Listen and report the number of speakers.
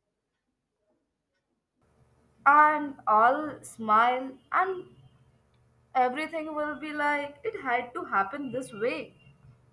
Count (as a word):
one